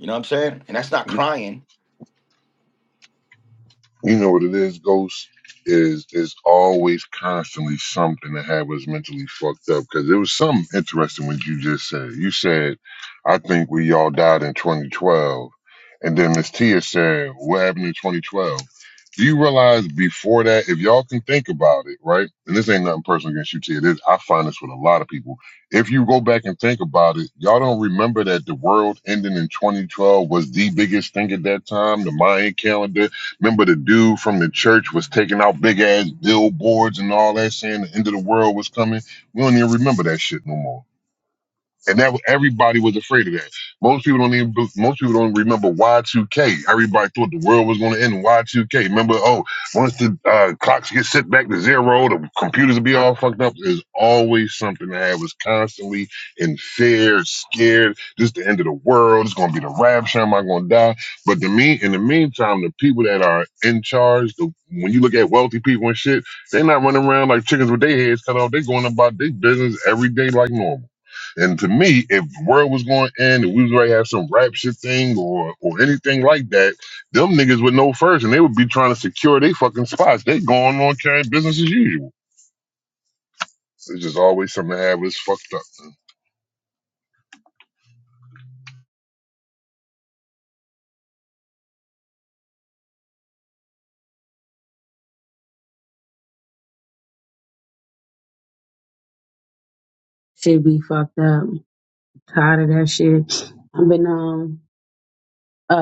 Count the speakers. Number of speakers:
3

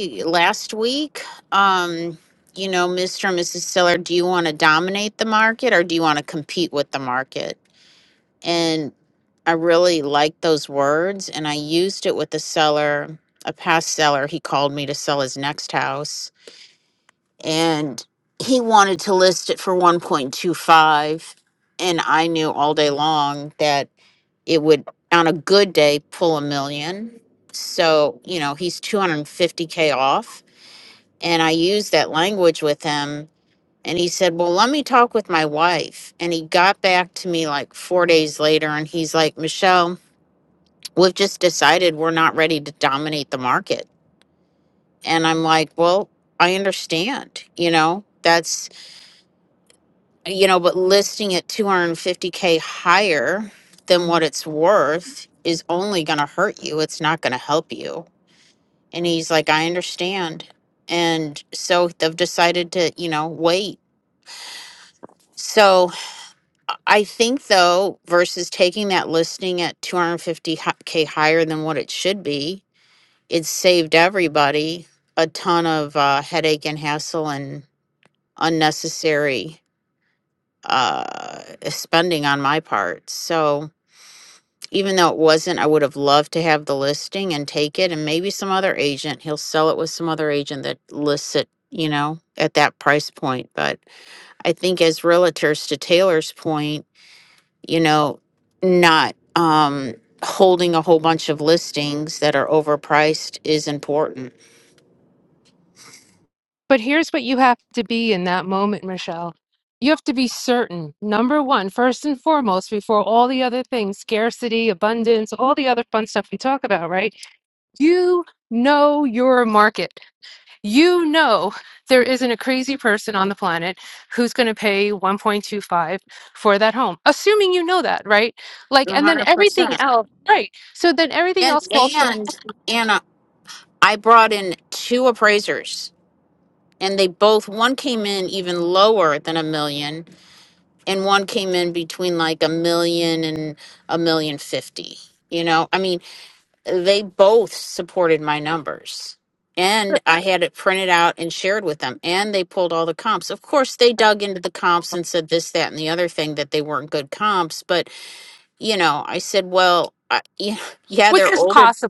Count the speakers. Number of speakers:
2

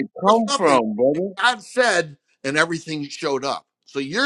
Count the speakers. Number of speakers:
2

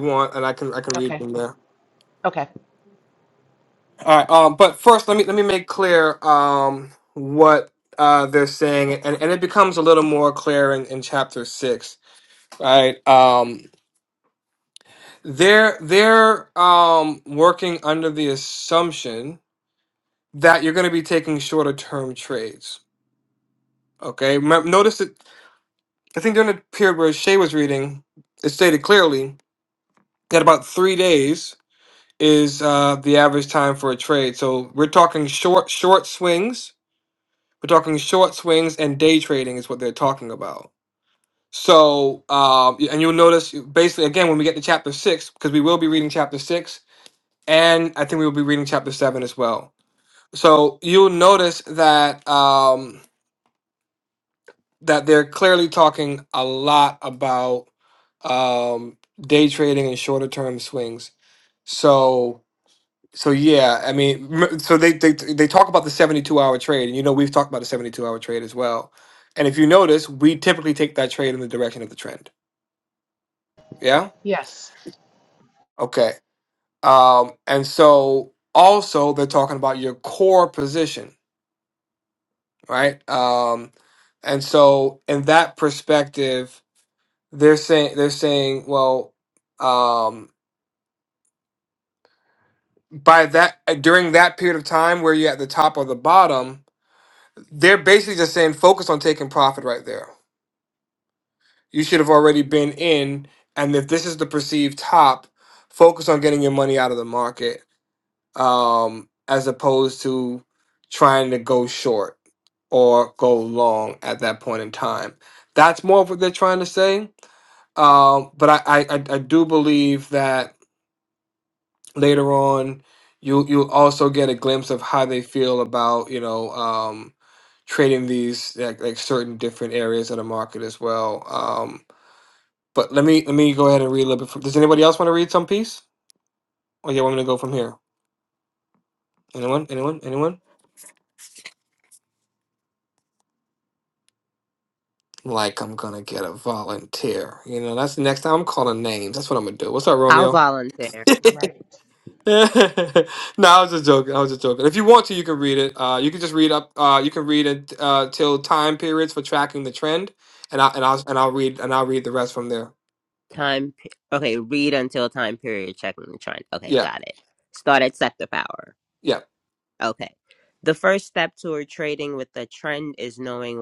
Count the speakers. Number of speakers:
3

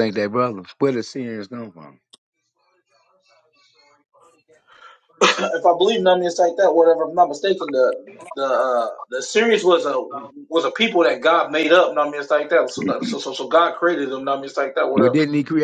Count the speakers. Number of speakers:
2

